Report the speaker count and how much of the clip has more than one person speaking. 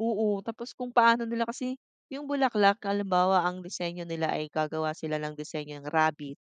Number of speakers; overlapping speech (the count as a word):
one, no overlap